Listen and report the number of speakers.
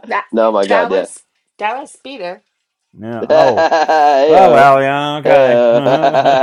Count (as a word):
three